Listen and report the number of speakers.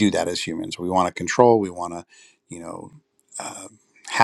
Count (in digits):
1